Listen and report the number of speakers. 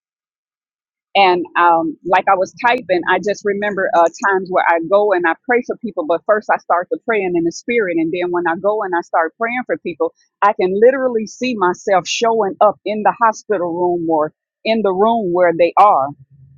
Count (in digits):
1